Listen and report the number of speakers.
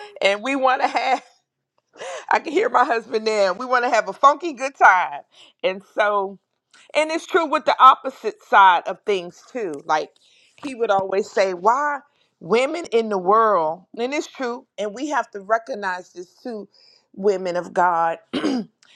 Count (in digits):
1